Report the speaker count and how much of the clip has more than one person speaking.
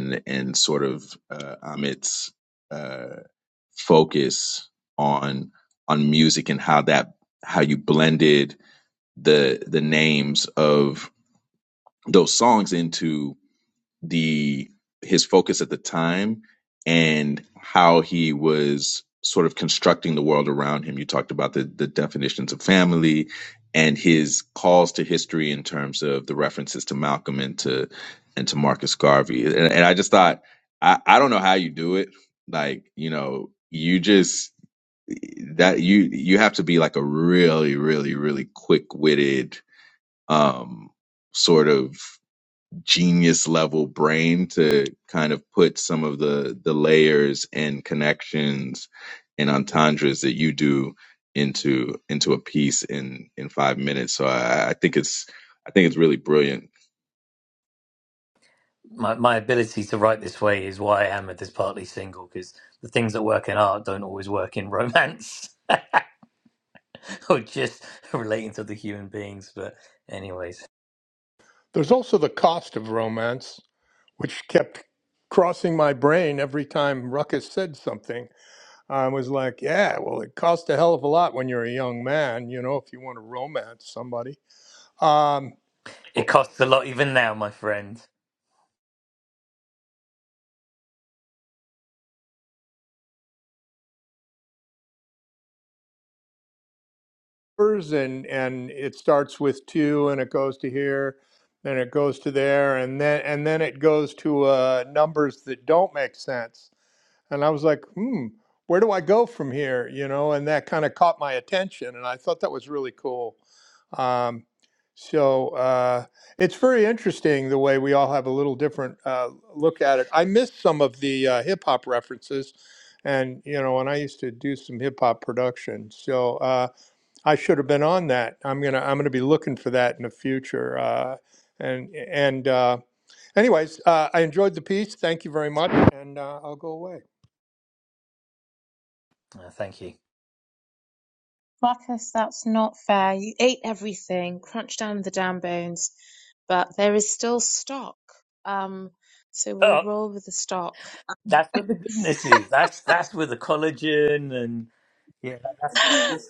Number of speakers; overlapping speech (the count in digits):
4, under 1%